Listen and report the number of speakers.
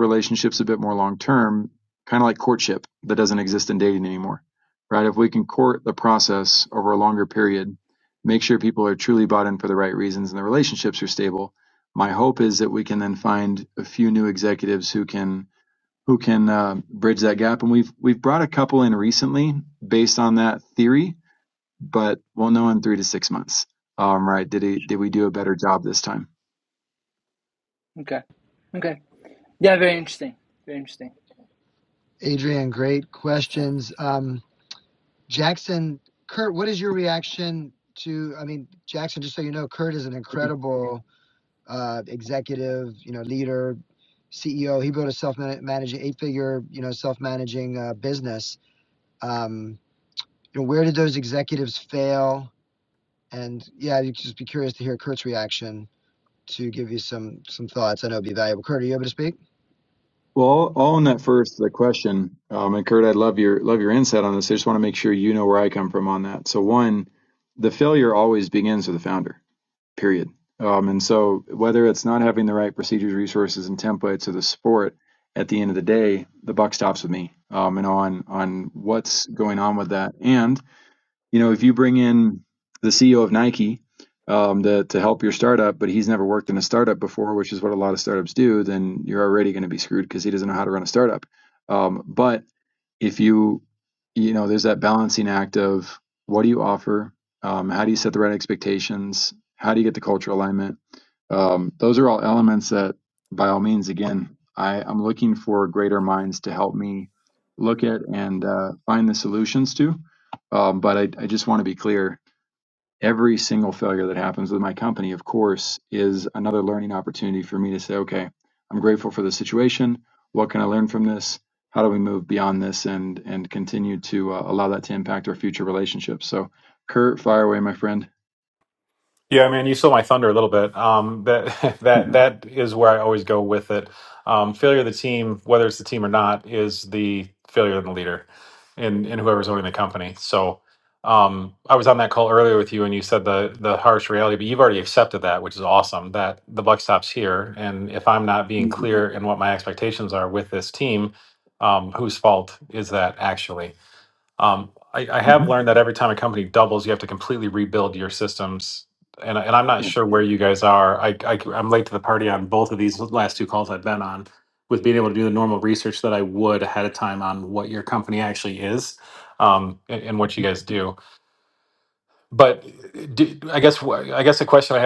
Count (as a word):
four